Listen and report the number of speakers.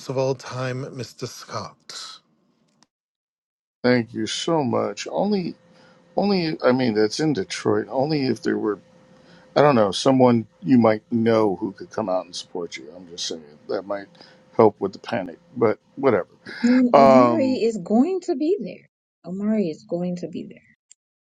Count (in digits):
3